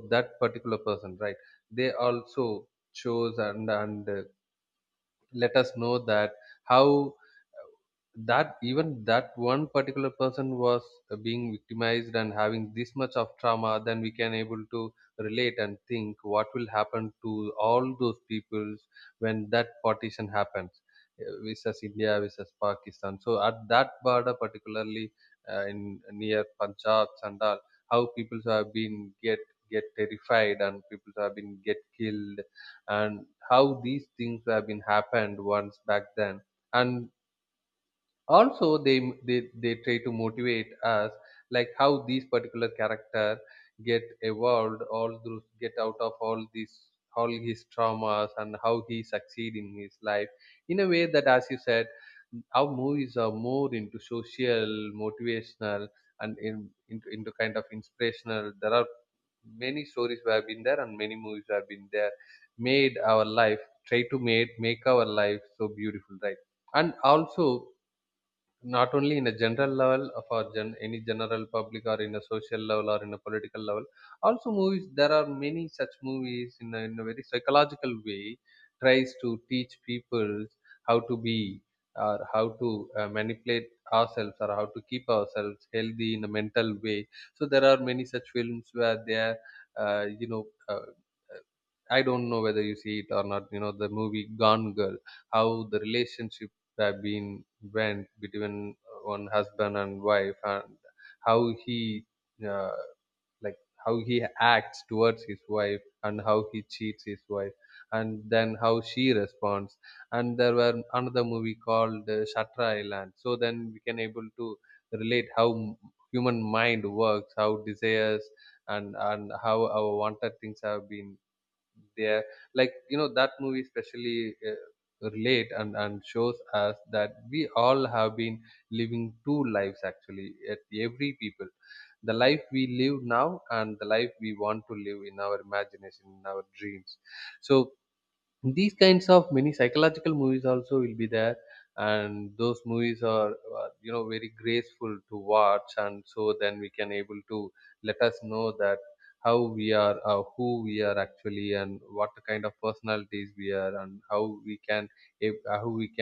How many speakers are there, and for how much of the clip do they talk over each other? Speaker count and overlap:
one, no overlap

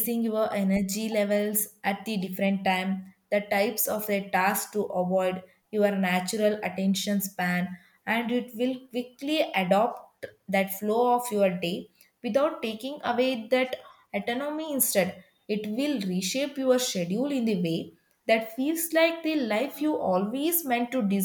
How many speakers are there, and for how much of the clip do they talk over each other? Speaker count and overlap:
one, no overlap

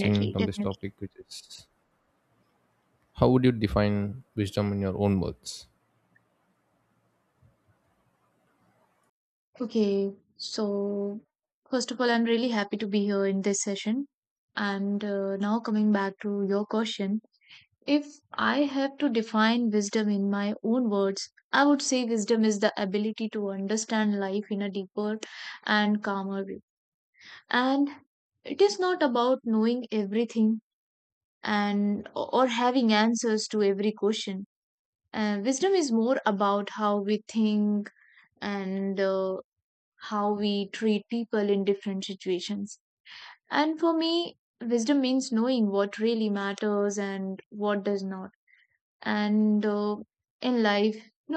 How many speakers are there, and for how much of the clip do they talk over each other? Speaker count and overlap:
two, about 1%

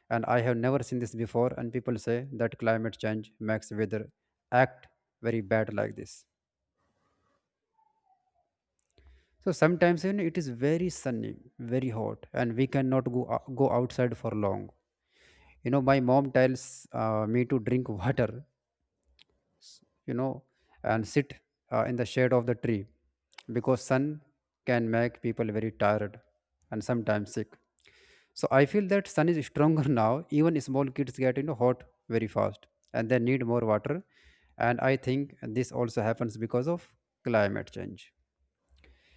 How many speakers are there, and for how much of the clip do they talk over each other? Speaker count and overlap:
one, no overlap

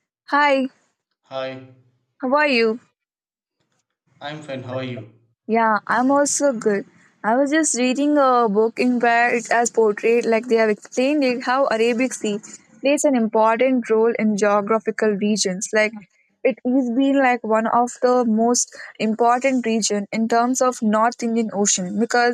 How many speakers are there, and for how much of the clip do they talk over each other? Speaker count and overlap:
two, no overlap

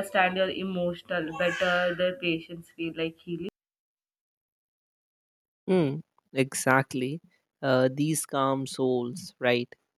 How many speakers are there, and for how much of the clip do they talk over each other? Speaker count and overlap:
two, no overlap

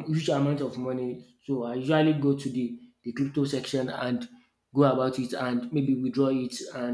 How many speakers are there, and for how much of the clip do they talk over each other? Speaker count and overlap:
one, no overlap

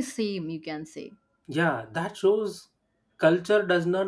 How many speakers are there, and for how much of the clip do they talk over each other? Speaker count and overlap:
two, no overlap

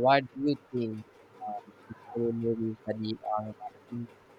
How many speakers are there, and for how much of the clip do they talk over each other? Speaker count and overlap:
one, no overlap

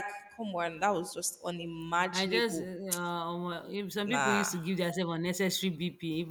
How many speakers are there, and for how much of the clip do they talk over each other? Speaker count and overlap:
two, about 13%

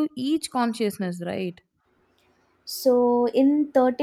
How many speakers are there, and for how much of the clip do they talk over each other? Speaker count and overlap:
two, no overlap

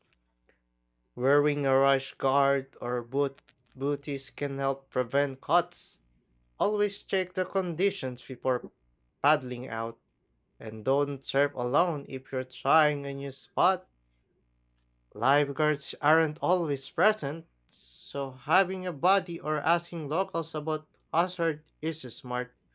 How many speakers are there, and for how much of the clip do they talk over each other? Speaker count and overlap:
one, no overlap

